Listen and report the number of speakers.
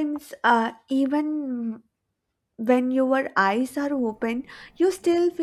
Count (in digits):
1